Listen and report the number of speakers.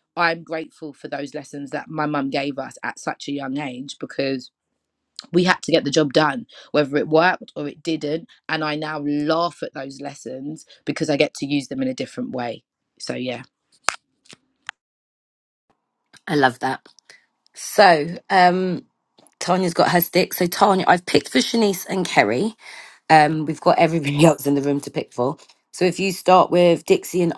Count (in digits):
2